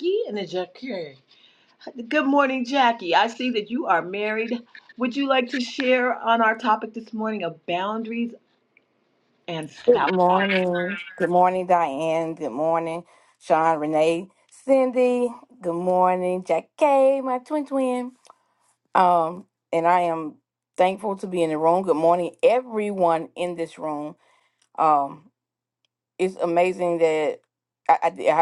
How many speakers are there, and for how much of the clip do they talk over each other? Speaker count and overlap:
2, about 1%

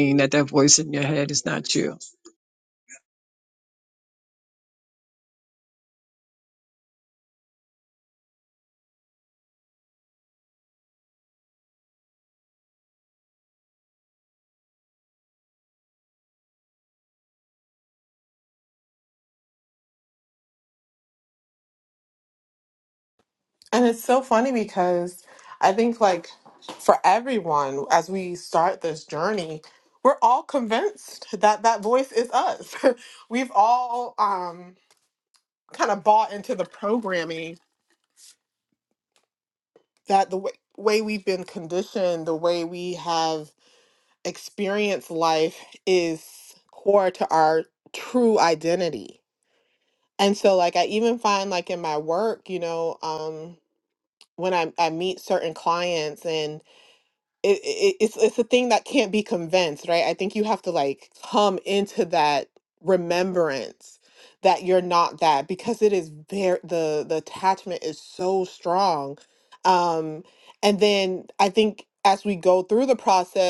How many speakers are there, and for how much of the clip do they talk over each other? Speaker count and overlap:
2, no overlap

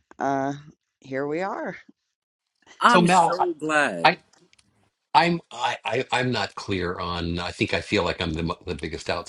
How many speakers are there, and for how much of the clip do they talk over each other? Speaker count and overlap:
3, about 6%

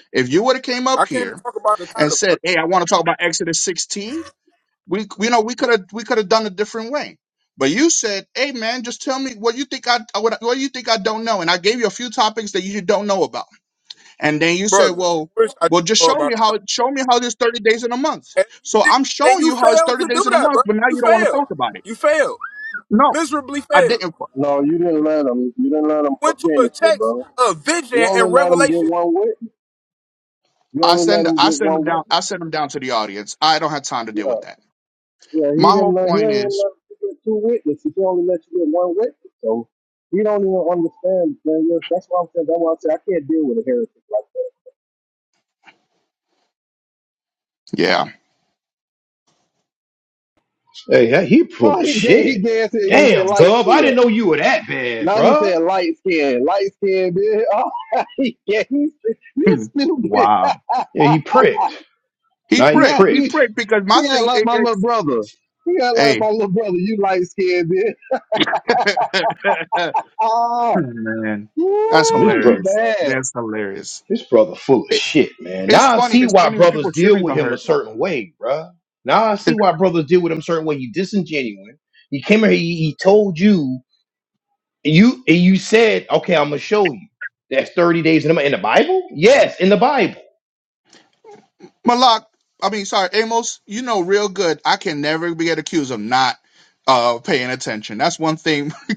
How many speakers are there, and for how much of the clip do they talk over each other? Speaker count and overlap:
4, about 17%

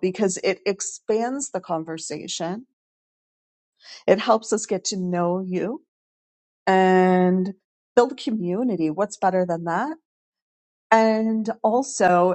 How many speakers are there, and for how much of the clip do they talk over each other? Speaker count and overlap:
1, no overlap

